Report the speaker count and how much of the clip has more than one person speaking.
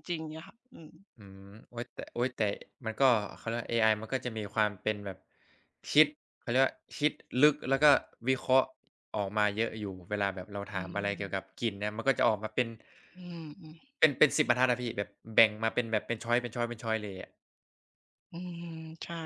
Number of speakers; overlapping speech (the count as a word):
two, no overlap